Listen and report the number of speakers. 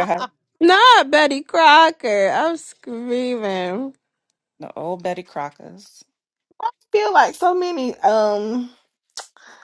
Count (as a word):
three